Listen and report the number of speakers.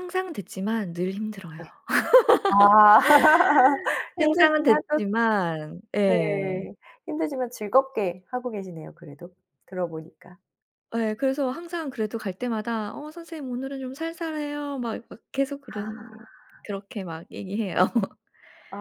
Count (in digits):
2